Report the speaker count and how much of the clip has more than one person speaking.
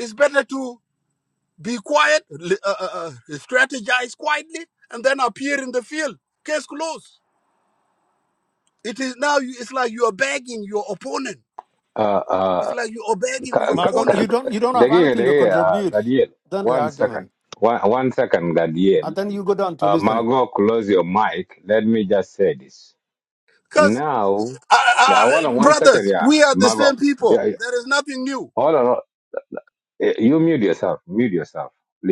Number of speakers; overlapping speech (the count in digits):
3, about 19%